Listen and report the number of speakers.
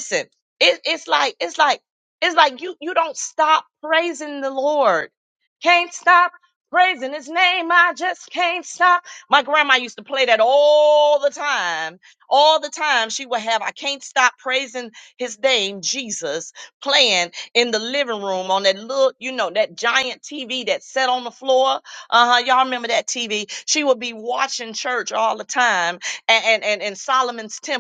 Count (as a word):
one